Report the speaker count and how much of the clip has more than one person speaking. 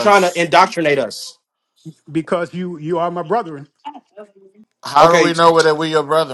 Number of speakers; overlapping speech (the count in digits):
3, about 9%